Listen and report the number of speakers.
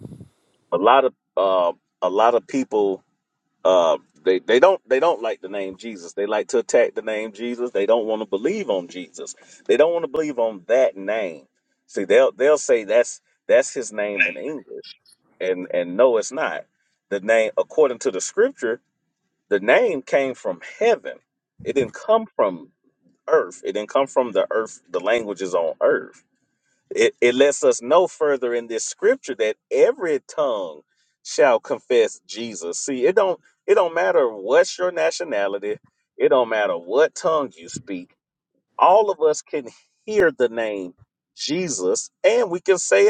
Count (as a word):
one